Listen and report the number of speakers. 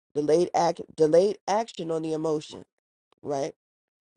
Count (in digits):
1